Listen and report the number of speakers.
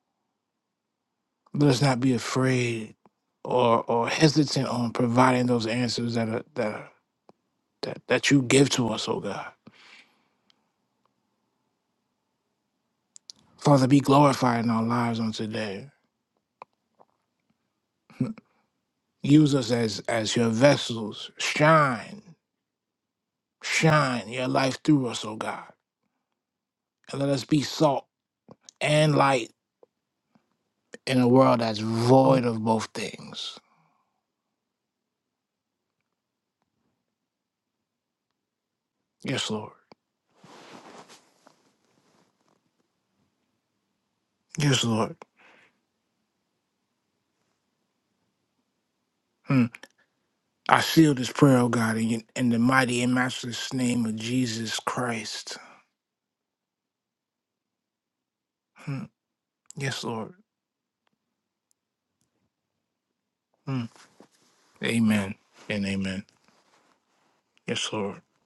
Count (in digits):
1